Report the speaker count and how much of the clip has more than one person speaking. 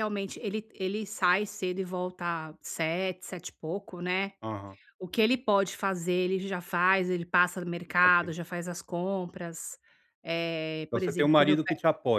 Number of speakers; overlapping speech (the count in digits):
2, about 9%